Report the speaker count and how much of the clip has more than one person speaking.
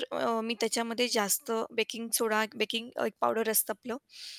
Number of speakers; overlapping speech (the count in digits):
1, no overlap